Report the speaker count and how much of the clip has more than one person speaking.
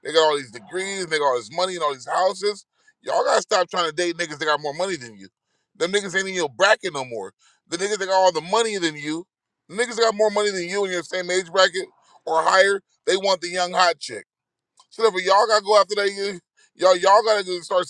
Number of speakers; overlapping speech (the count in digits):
1, no overlap